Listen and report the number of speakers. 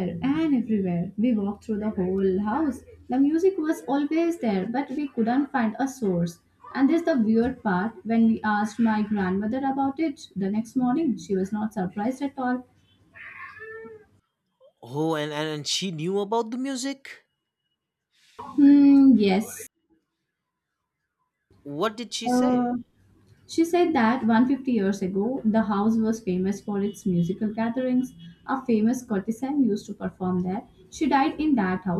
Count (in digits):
2